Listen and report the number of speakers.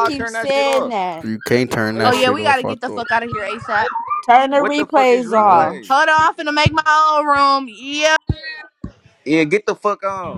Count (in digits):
4